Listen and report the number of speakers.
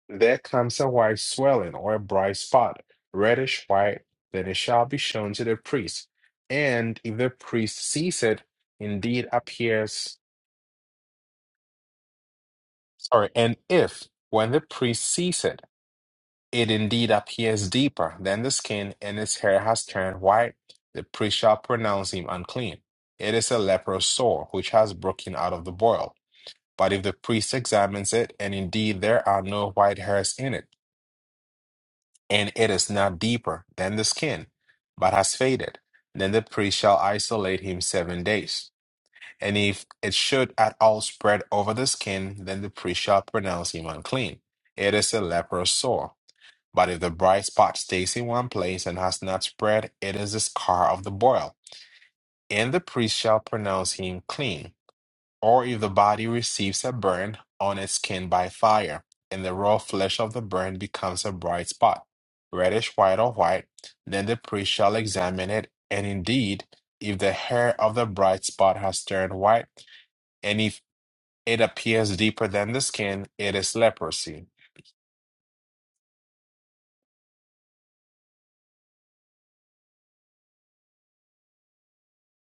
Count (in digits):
1